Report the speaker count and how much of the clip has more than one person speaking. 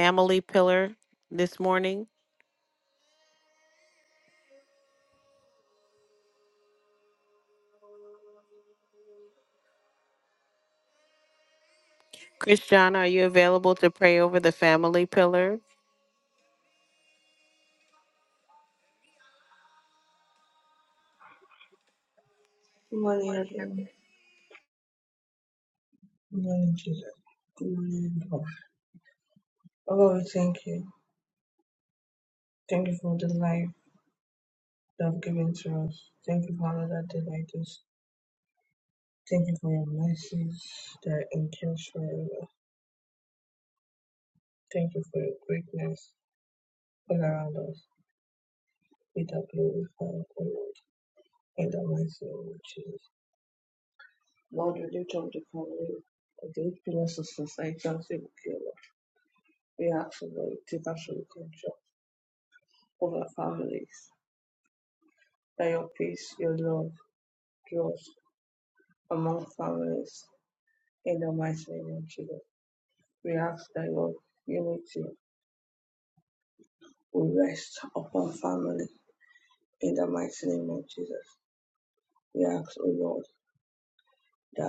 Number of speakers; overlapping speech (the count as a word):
two, no overlap